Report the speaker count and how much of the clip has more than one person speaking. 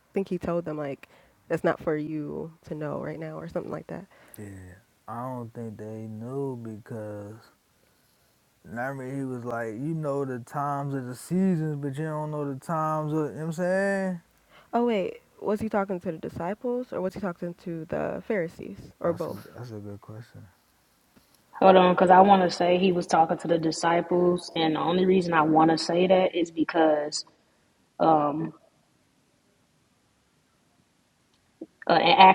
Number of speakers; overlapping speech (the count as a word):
three, about 1%